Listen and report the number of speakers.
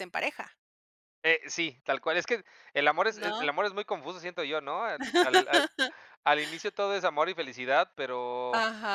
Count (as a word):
two